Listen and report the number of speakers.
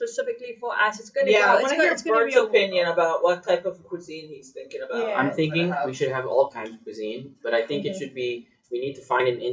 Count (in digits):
3